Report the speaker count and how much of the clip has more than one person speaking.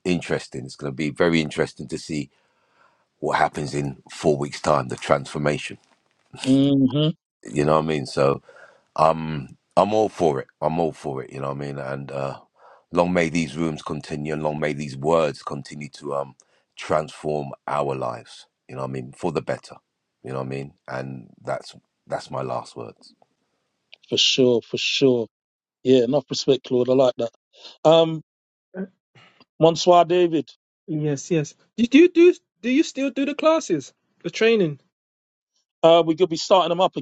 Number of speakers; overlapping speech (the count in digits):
3, no overlap